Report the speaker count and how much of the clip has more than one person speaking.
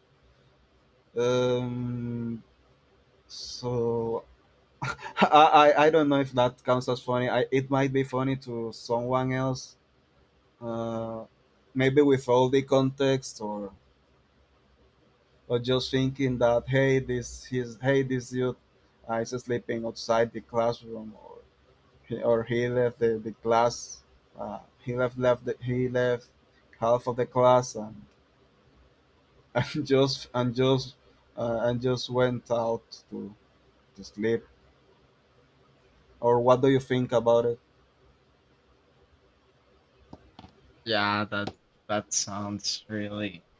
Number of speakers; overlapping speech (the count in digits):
2, no overlap